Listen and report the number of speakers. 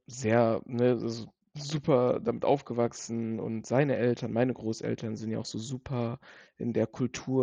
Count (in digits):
1